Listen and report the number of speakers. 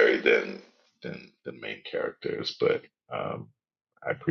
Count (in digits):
1